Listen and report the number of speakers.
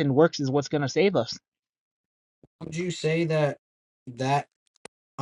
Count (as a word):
two